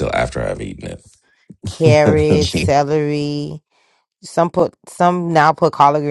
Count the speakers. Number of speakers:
two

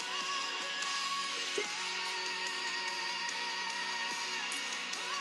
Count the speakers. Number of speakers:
zero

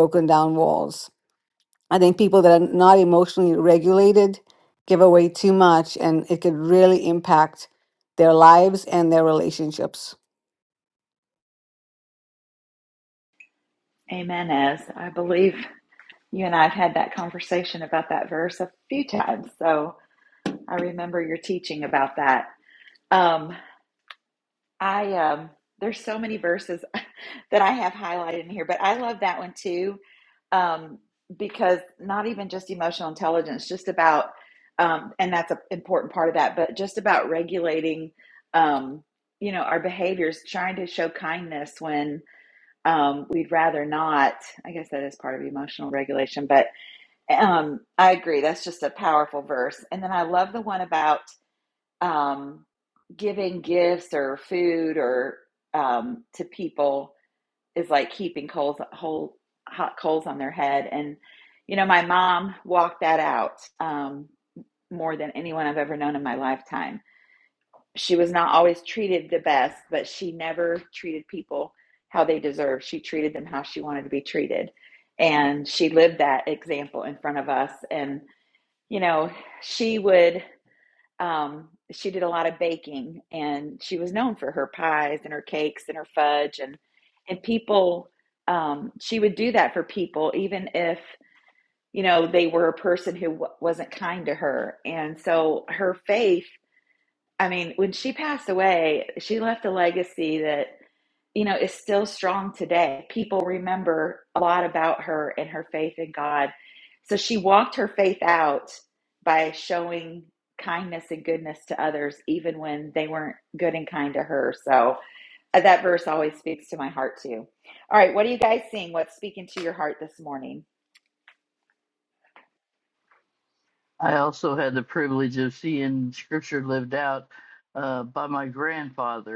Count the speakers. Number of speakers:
three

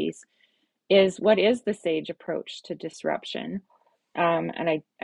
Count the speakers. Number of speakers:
one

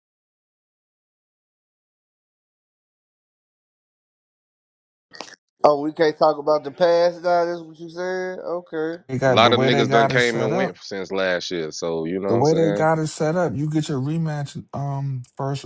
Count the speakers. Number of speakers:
three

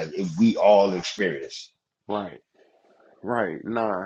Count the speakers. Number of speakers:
two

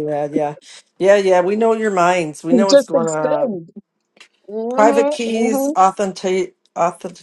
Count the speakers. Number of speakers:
two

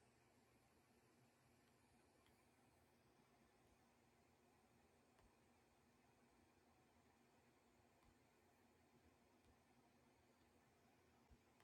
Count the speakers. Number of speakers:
zero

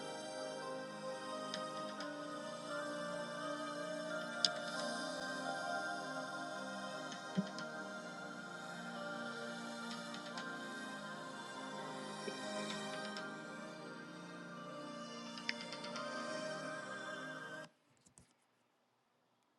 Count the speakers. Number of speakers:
zero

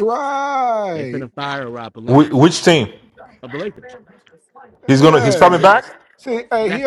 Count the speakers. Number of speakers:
three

